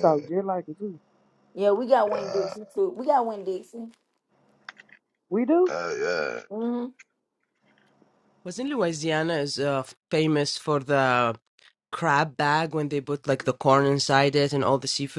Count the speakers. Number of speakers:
four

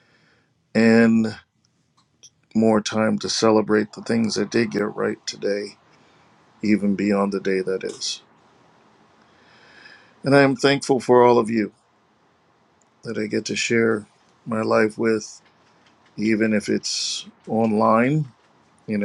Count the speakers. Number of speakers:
one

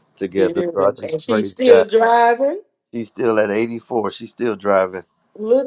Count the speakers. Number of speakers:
two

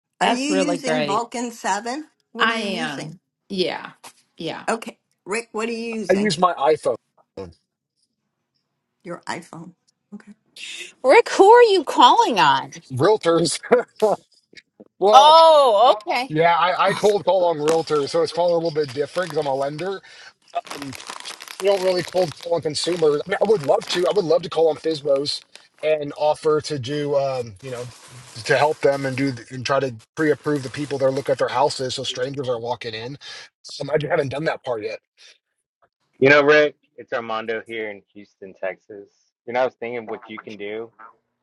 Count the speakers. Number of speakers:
five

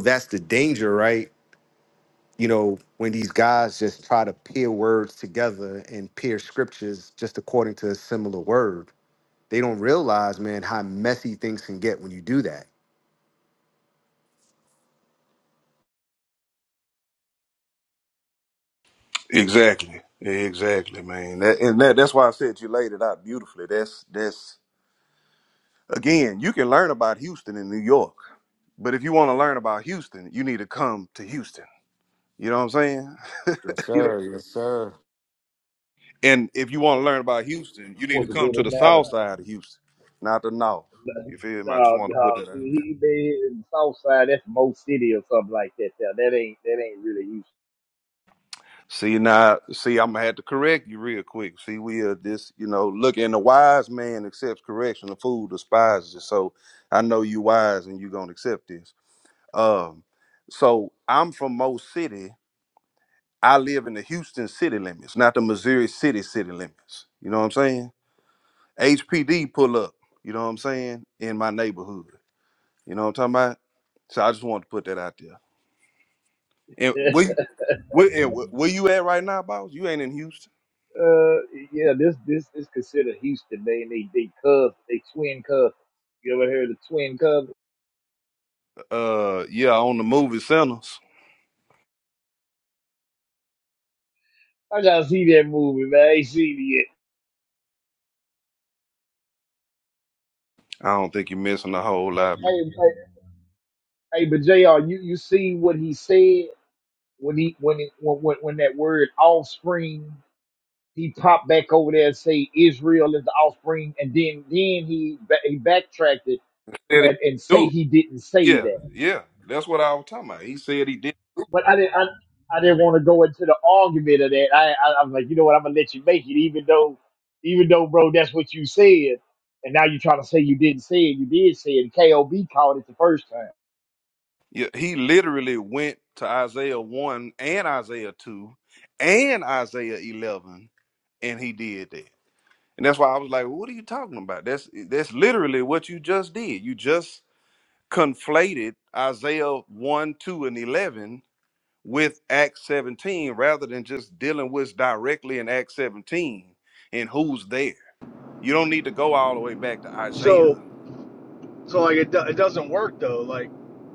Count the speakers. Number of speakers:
four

